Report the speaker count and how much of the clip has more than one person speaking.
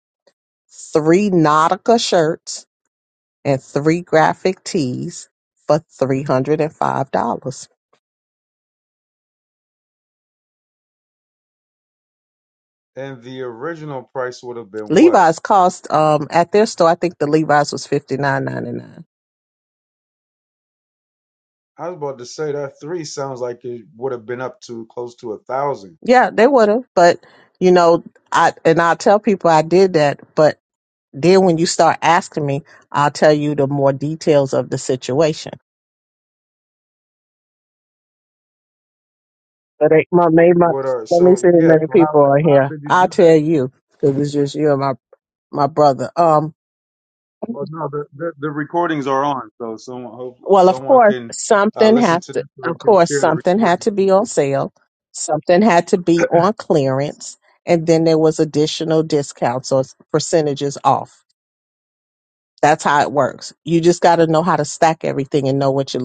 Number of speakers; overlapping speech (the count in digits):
2, about 8%